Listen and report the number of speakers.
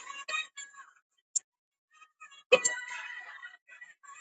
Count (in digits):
0